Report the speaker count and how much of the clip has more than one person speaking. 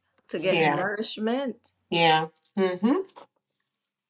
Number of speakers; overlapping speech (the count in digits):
2, about 8%